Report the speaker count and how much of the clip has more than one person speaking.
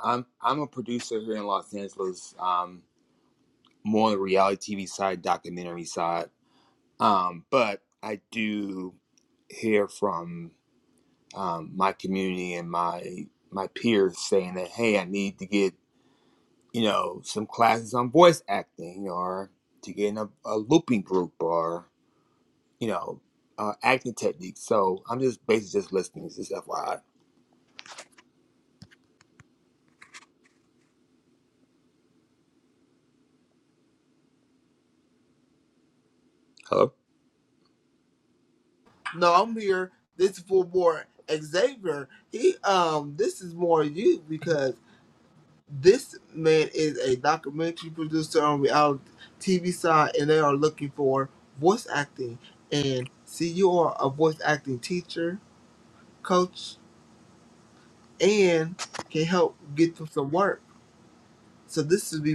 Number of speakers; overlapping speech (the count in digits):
2, no overlap